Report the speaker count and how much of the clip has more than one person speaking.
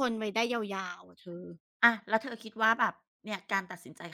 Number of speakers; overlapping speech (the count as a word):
two, no overlap